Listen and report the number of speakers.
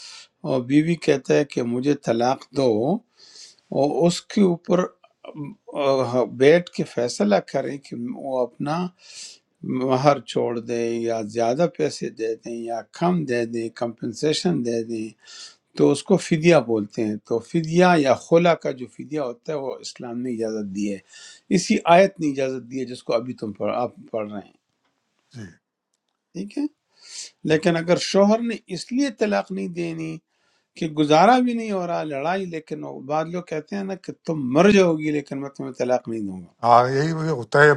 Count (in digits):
2